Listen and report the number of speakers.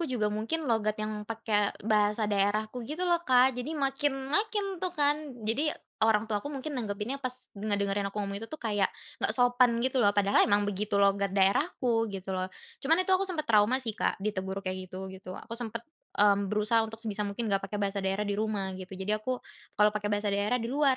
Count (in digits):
1